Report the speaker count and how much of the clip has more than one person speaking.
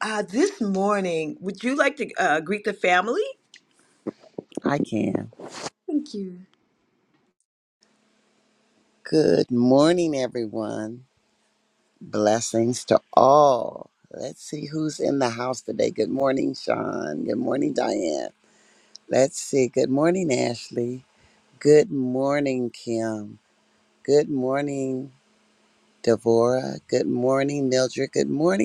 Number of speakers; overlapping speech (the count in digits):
2, no overlap